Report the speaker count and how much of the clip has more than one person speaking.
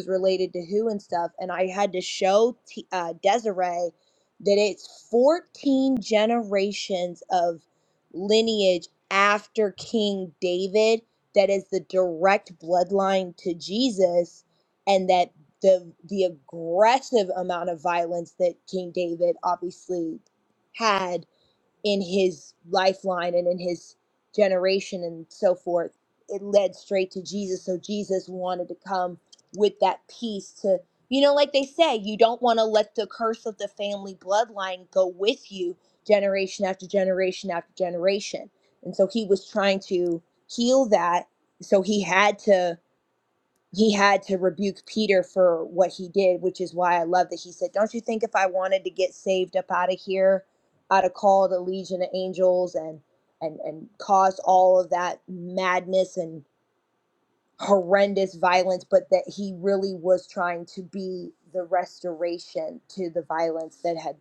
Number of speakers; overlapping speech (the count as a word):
one, no overlap